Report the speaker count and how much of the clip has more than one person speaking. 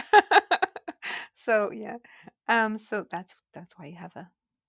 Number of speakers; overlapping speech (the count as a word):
one, no overlap